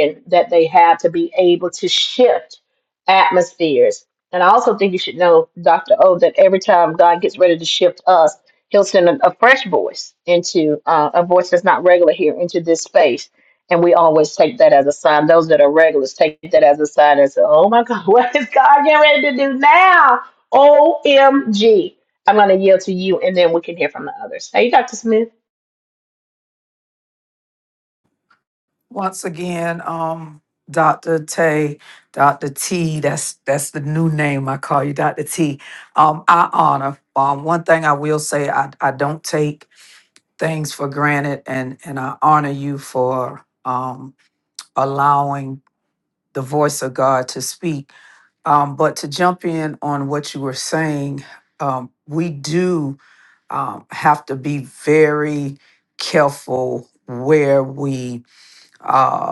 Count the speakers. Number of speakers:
two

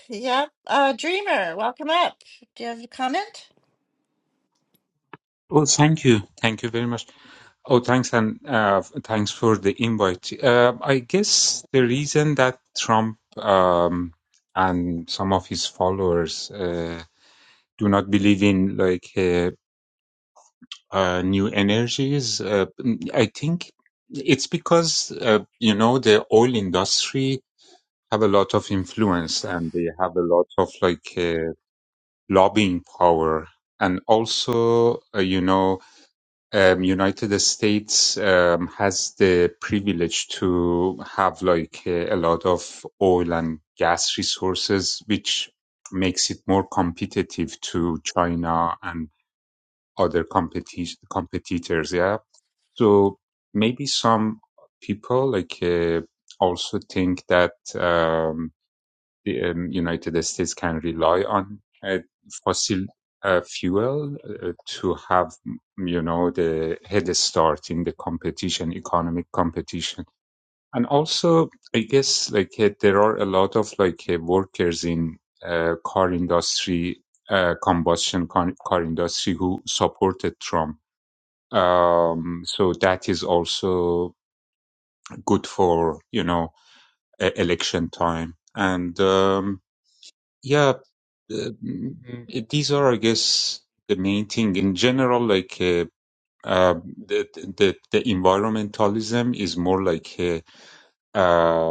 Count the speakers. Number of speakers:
two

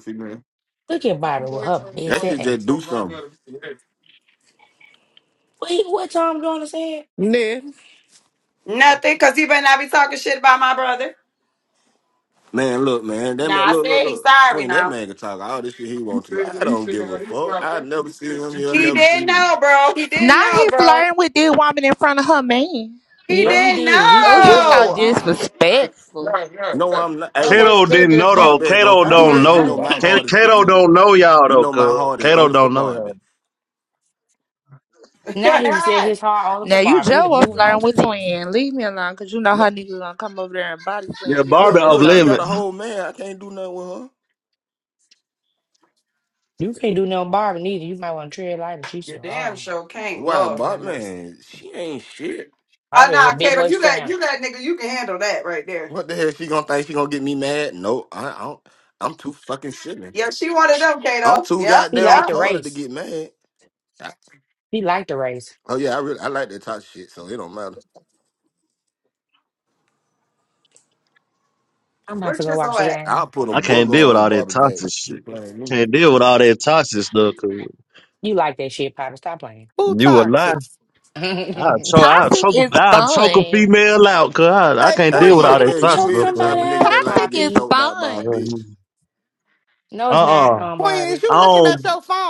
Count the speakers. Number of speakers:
six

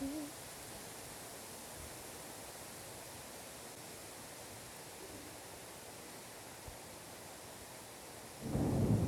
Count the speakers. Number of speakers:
zero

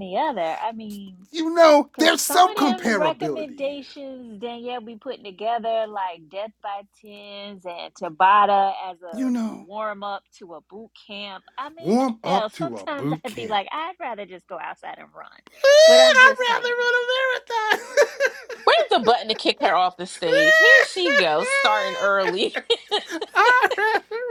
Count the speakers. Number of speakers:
three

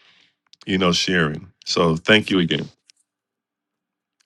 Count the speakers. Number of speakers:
one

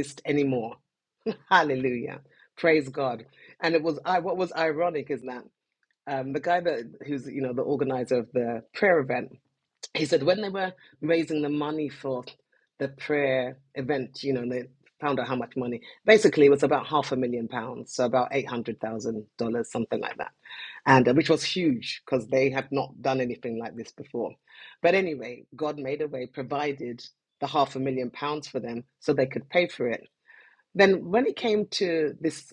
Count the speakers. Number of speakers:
one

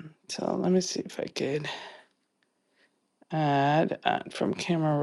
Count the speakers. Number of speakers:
one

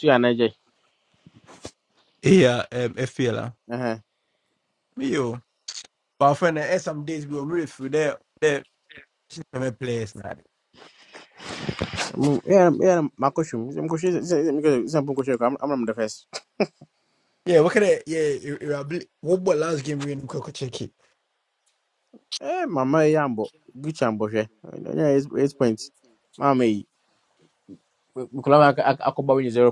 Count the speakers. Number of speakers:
two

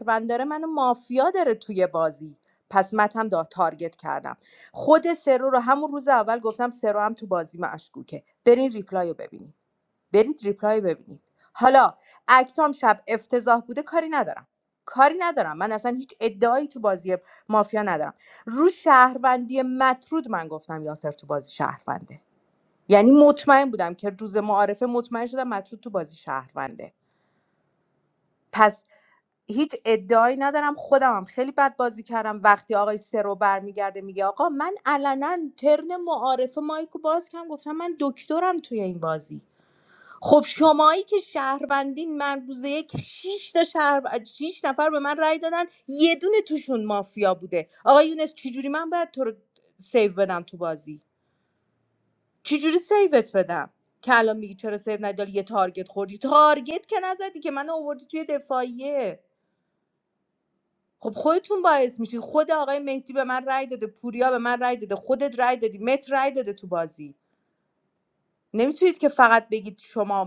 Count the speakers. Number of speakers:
one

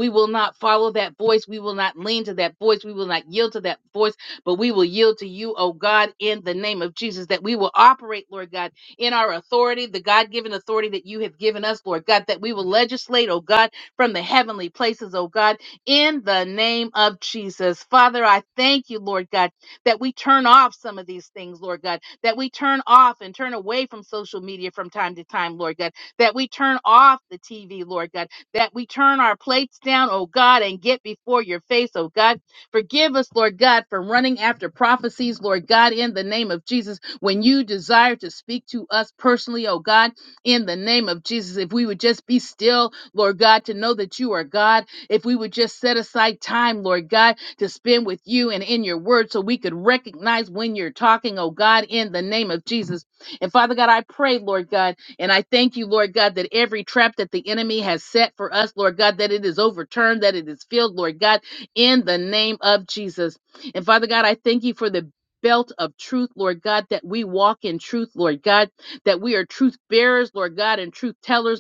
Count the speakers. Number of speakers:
one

